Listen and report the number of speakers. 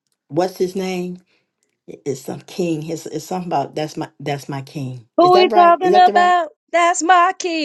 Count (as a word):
two